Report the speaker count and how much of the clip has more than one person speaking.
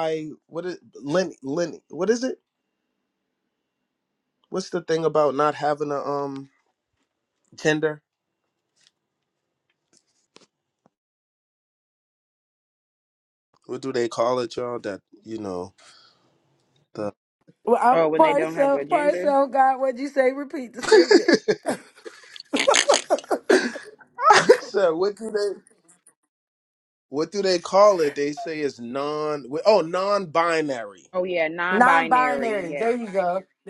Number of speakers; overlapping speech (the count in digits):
3, about 8%